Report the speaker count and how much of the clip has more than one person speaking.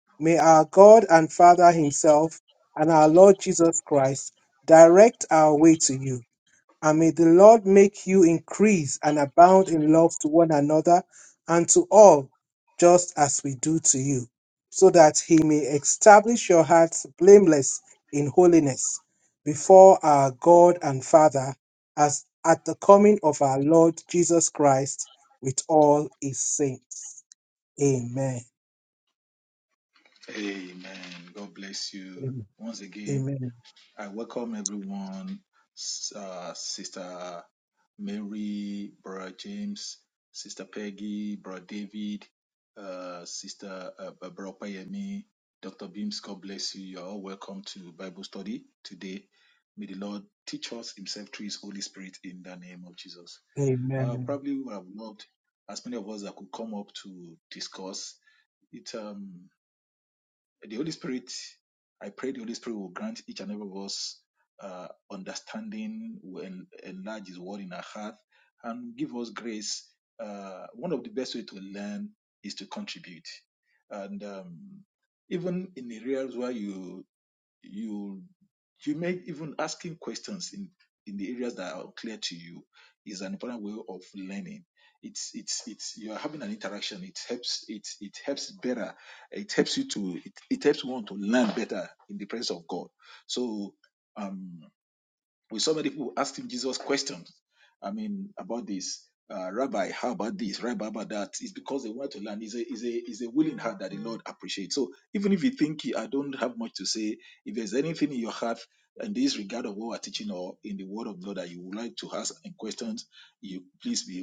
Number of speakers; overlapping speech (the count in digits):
2, under 1%